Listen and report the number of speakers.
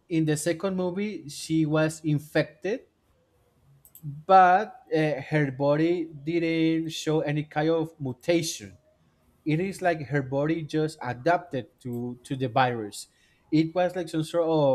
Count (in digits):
1